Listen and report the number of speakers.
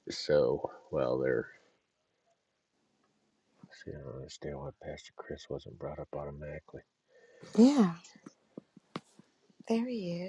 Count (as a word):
two